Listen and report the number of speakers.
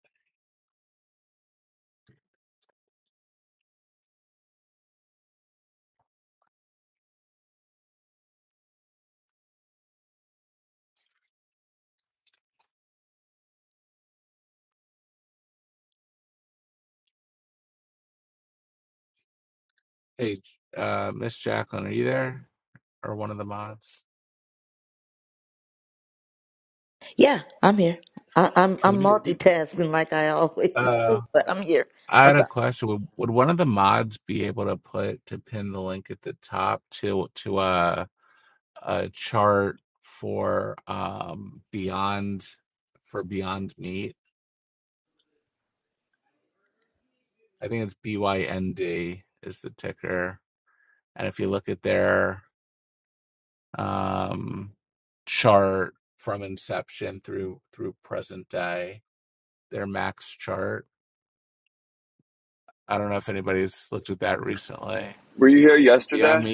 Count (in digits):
3